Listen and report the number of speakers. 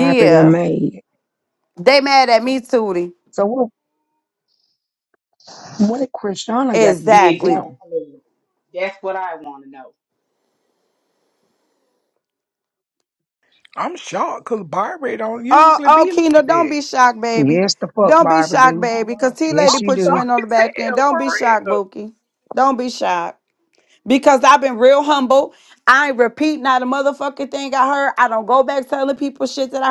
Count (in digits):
4